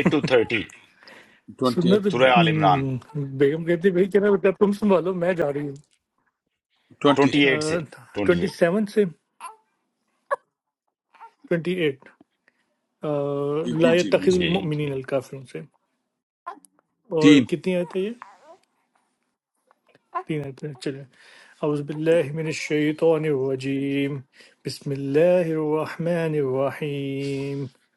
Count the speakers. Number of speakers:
3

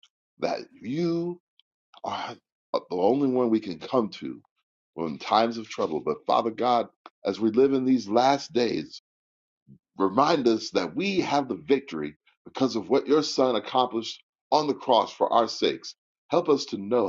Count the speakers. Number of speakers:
1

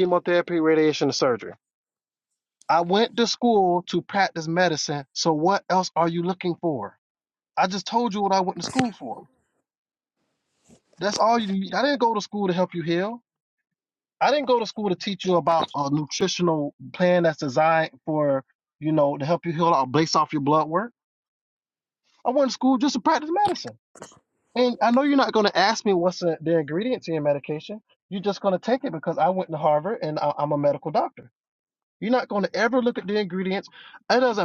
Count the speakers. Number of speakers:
1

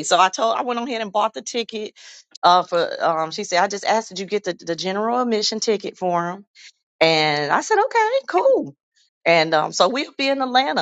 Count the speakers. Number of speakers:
1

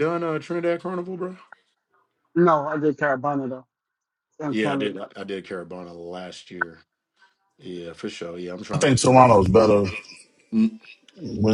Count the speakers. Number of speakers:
3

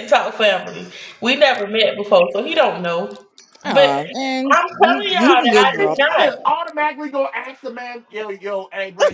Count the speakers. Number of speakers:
3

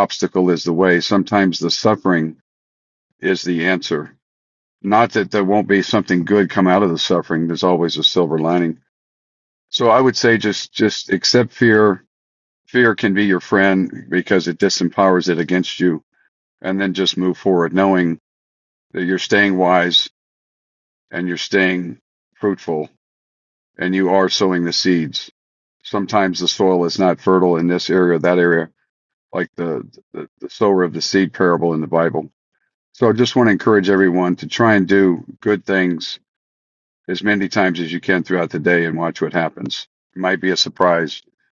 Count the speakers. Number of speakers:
1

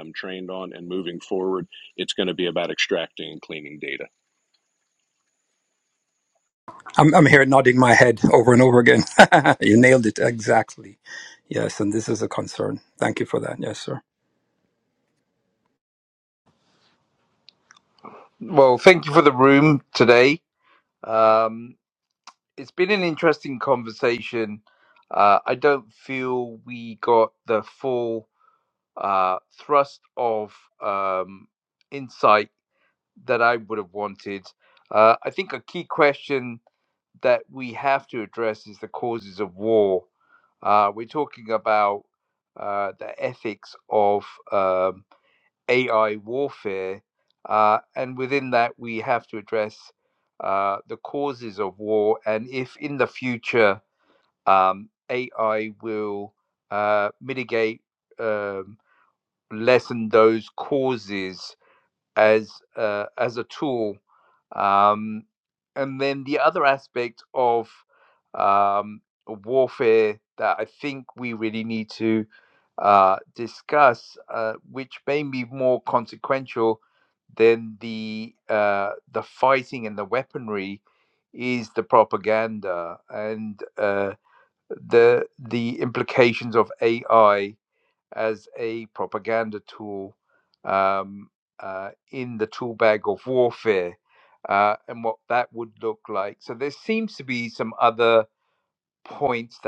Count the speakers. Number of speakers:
3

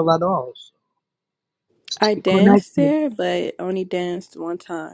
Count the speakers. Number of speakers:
2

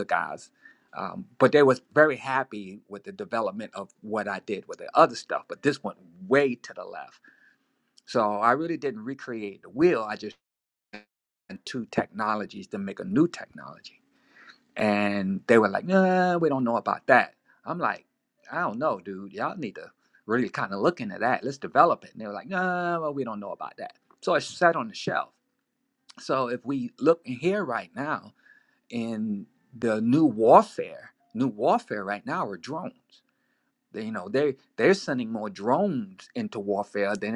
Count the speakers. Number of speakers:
1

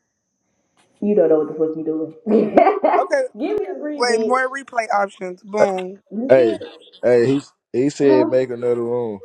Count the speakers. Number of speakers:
3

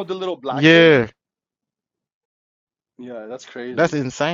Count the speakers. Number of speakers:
2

